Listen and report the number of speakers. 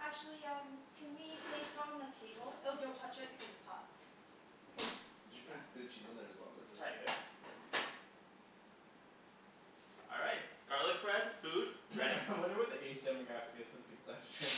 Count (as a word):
four